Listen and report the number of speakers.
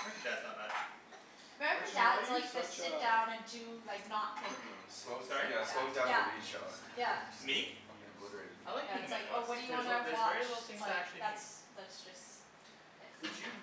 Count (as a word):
four